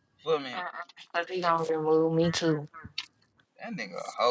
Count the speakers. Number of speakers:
2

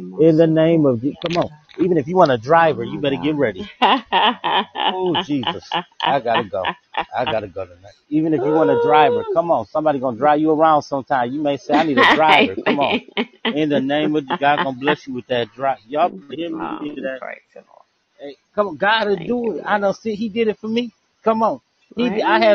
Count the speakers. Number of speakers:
2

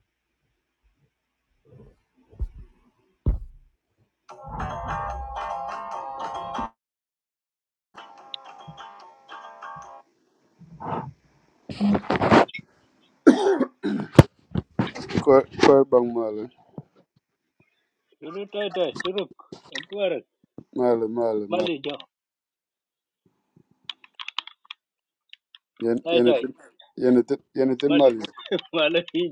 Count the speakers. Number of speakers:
2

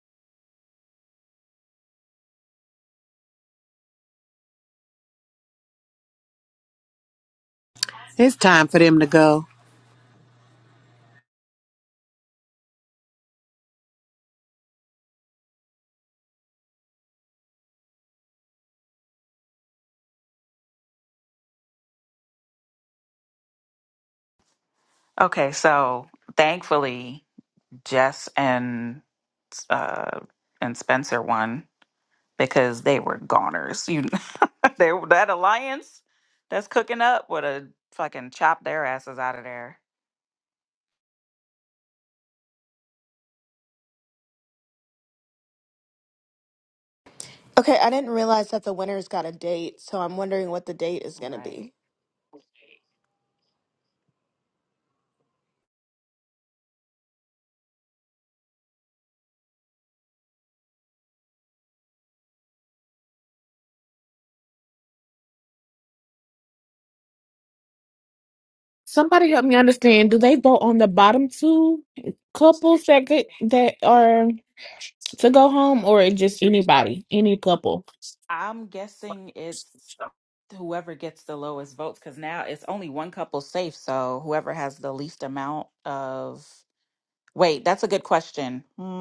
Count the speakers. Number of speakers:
4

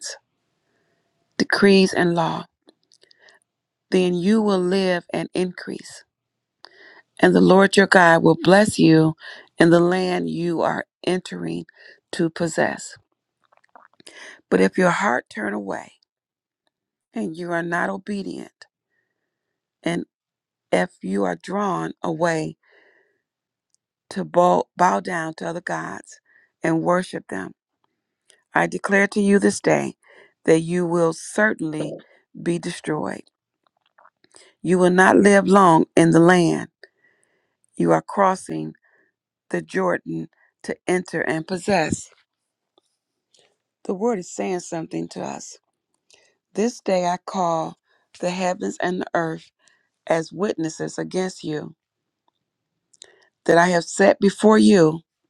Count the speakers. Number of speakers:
1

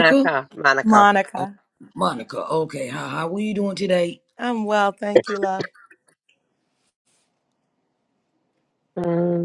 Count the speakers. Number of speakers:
3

